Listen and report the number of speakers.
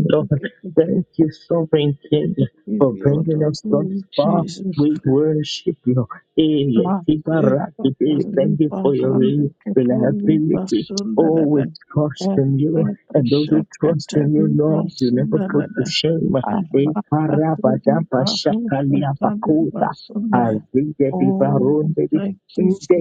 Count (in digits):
2